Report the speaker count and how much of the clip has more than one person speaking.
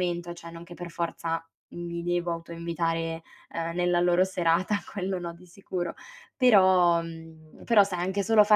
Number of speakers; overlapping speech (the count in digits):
1, no overlap